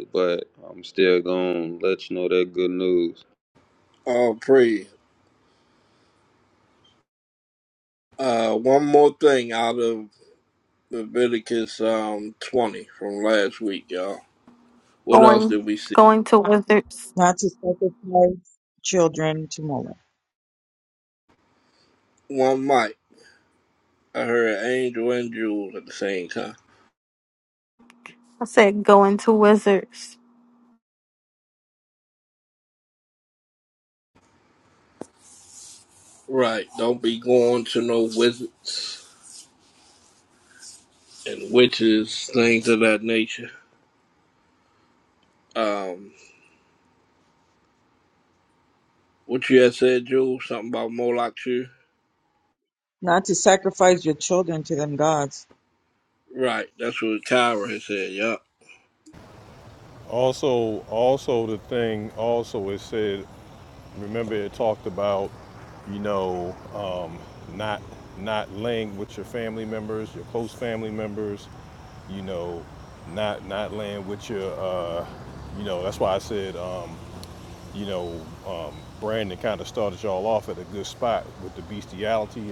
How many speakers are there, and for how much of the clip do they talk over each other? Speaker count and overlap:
5, about 1%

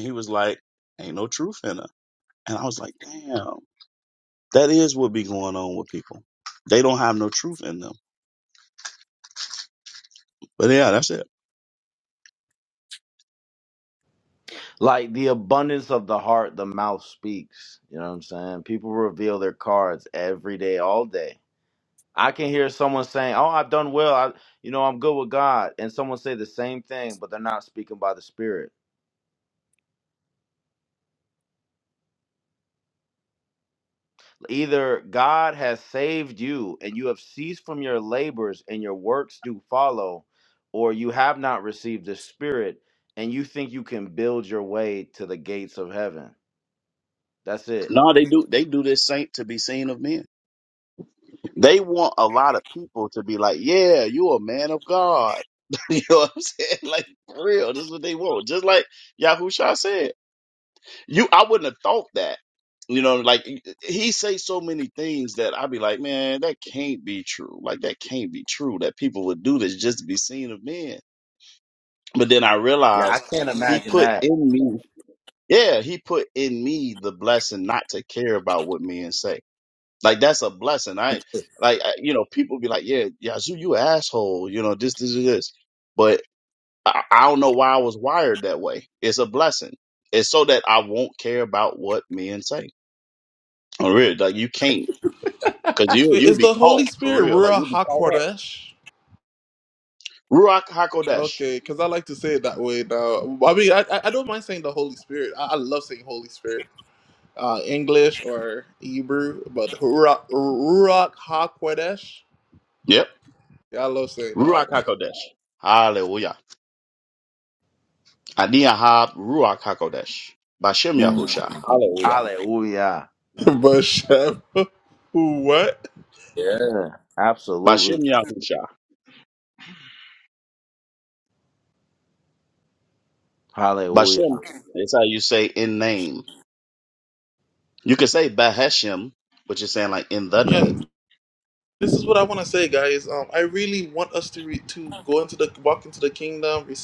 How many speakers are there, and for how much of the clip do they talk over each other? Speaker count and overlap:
3, about 4%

